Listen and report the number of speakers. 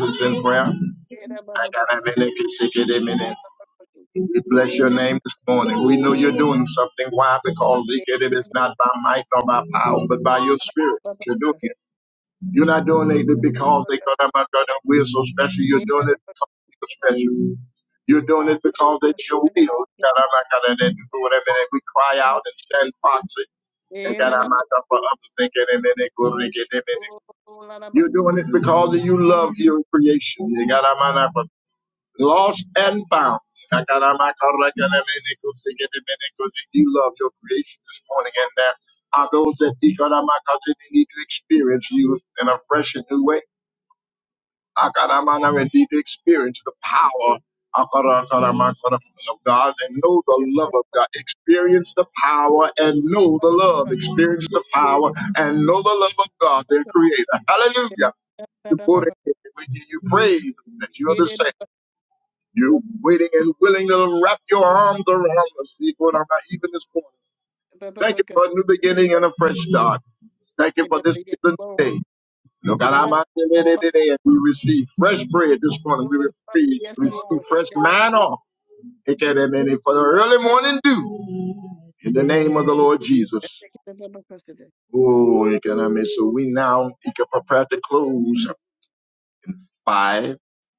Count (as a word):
two